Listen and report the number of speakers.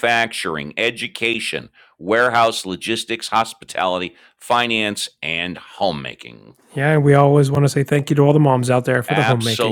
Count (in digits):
2